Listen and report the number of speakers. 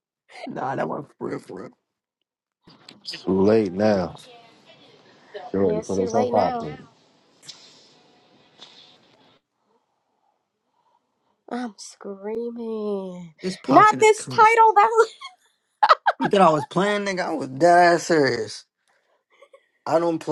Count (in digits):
3